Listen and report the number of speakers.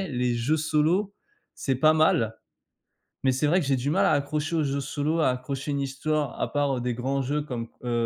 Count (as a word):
one